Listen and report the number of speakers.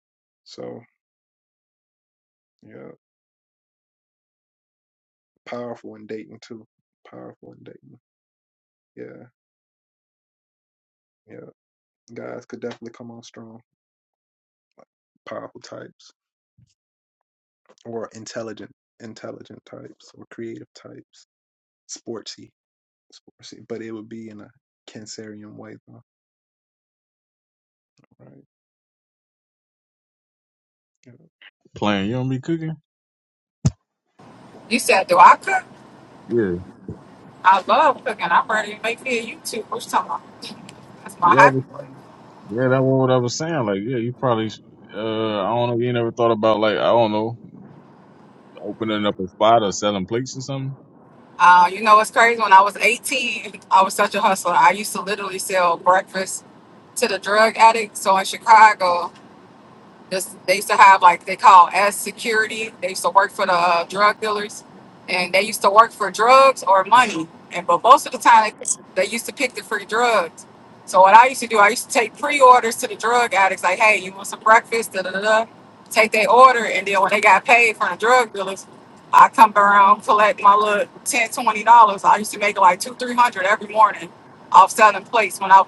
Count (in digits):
3